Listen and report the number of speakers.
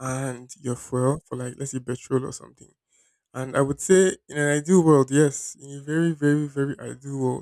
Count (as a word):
one